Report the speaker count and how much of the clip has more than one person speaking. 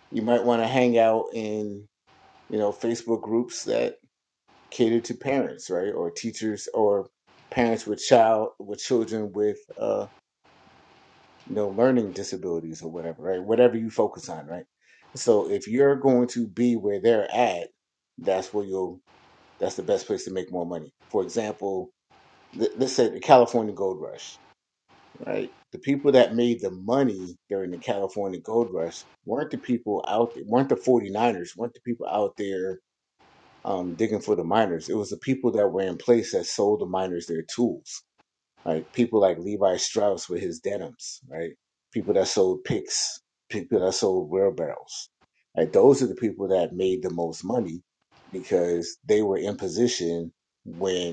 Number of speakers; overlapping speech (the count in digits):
1, no overlap